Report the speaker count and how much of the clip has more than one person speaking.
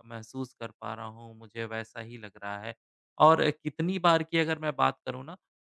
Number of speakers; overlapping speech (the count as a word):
one, no overlap